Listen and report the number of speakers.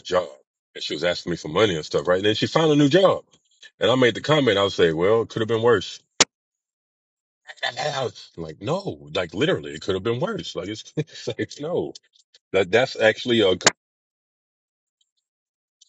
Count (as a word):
one